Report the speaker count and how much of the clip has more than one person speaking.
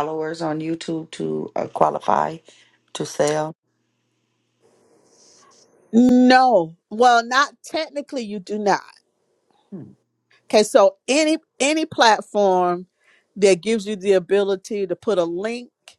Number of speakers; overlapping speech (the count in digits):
2, no overlap